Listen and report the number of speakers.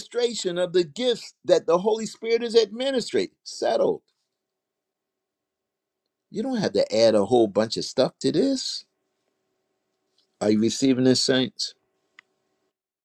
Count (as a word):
one